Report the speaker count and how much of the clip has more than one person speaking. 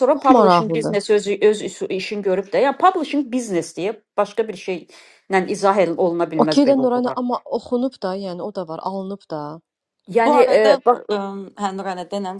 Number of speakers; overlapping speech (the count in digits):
3, about 19%